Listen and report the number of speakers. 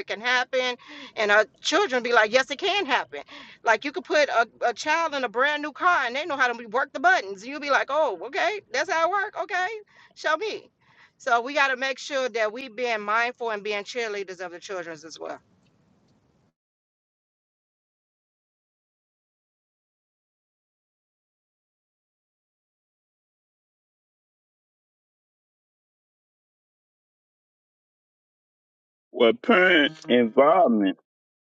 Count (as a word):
two